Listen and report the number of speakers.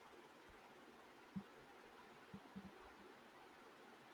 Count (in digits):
0